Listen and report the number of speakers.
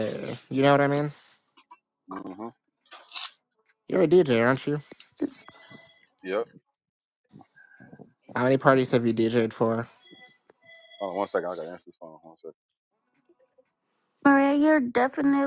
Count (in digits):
3